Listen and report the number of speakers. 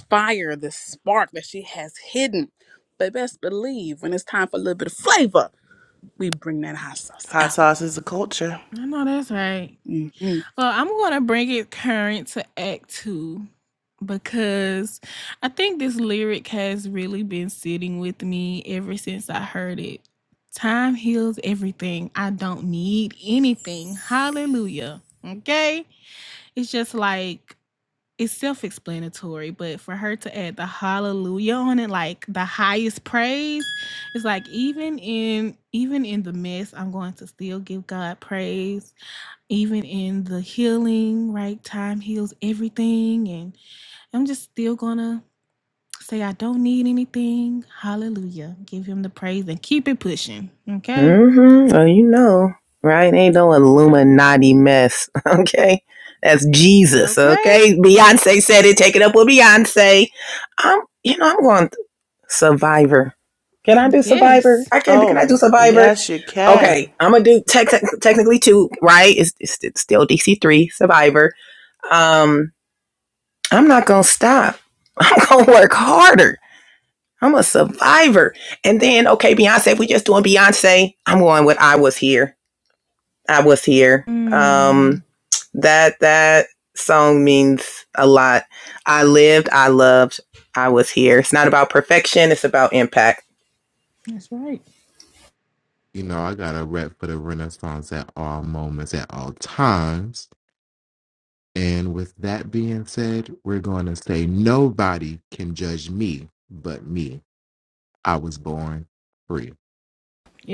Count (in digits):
5